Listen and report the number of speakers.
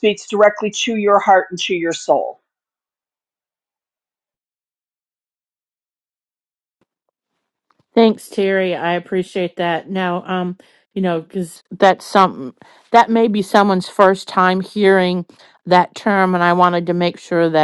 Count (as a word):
two